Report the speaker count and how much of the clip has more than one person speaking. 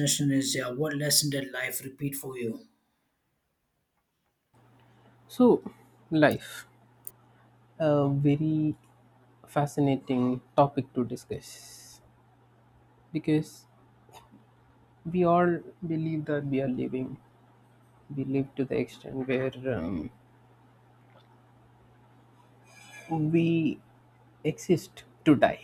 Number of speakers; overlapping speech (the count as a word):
two, no overlap